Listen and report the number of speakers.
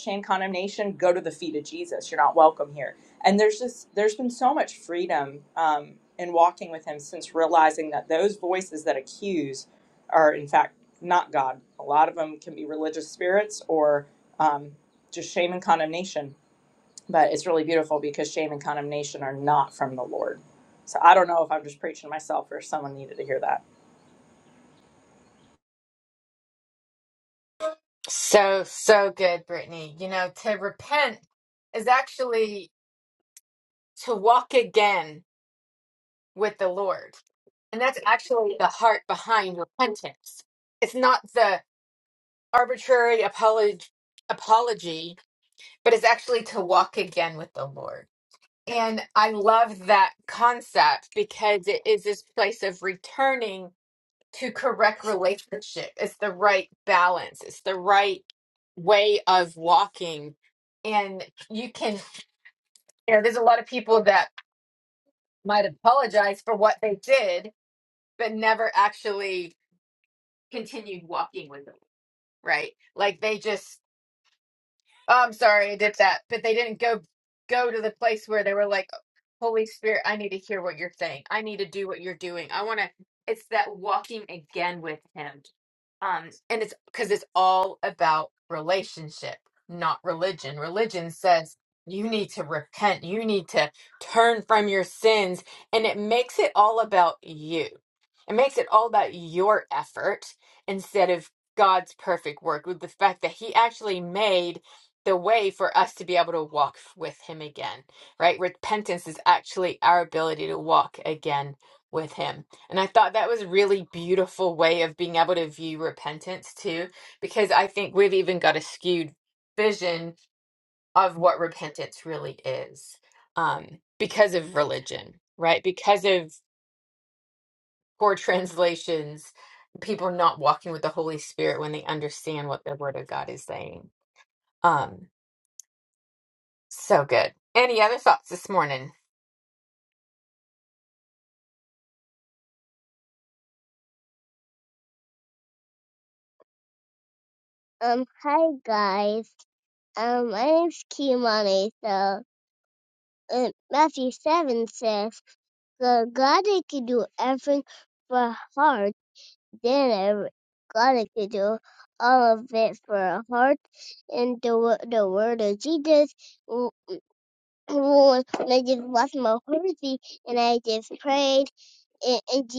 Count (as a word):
three